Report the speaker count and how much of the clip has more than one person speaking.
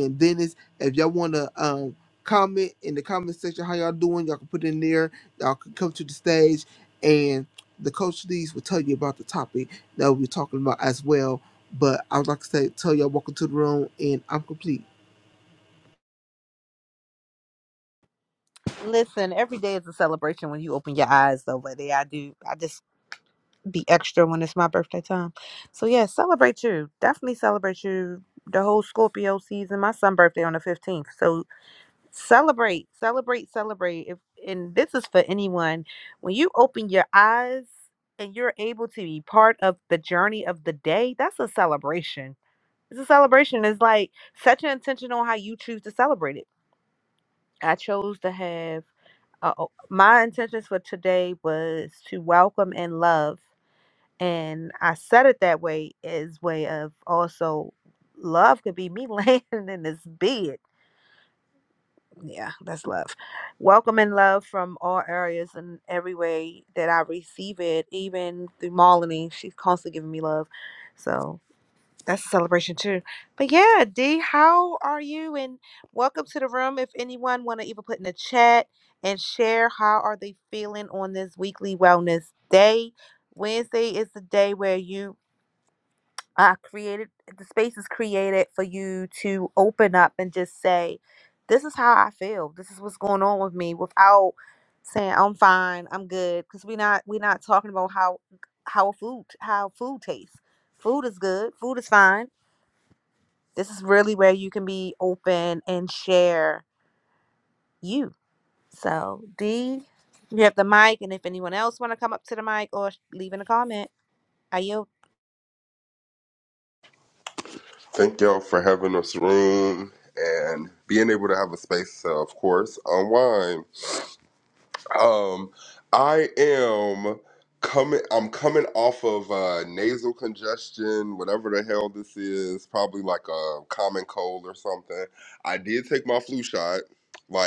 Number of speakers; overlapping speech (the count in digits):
3, no overlap